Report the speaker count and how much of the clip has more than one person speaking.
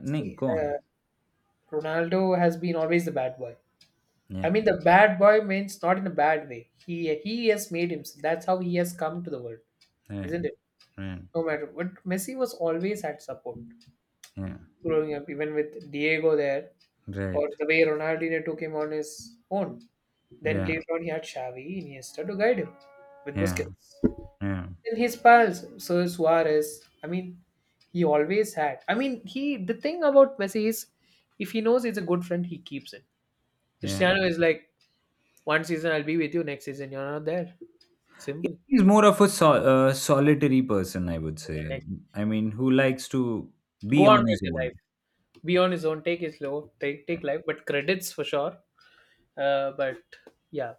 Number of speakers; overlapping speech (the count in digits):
2, about 6%